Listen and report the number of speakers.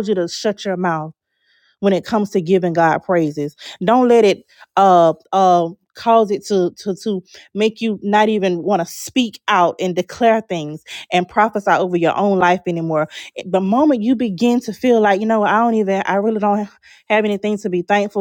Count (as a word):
one